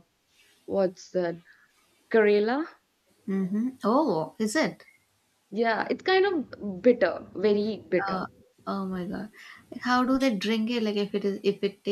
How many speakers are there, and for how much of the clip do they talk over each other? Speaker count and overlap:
two, about 1%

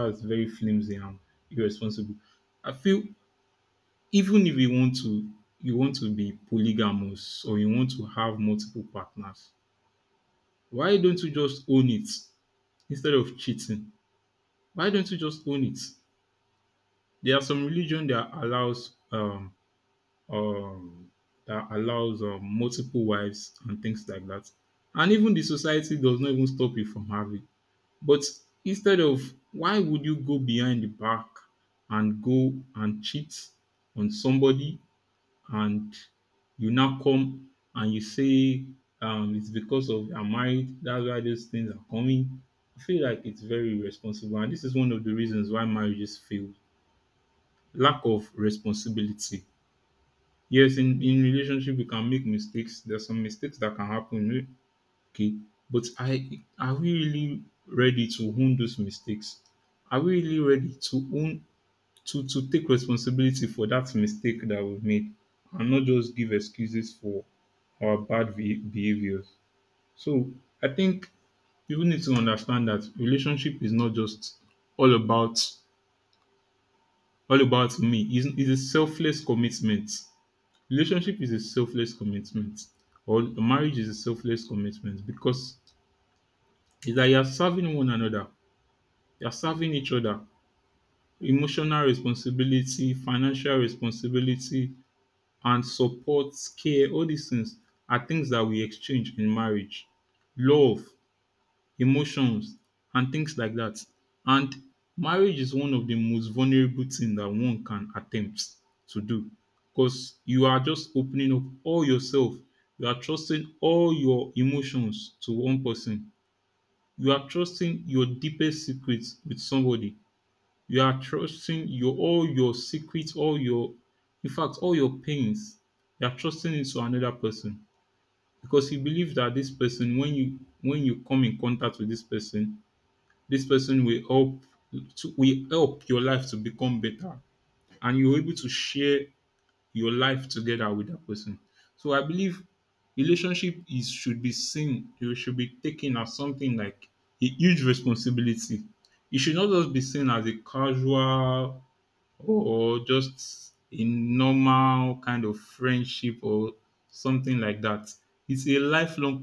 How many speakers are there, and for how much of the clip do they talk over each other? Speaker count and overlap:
one, no overlap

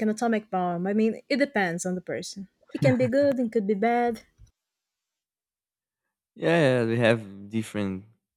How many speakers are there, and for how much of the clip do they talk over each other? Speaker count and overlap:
two, no overlap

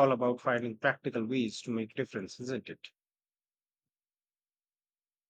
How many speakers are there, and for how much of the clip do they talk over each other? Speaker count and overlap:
one, no overlap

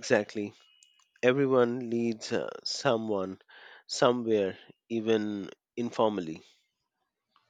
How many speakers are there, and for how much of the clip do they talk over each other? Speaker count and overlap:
one, no overlap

